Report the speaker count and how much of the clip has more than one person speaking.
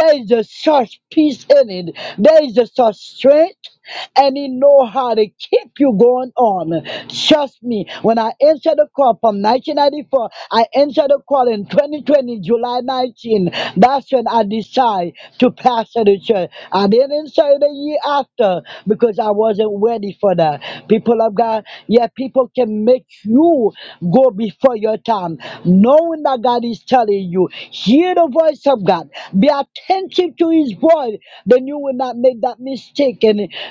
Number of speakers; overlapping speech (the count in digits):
1, no overlap